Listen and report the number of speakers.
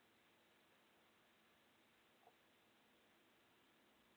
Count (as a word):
zero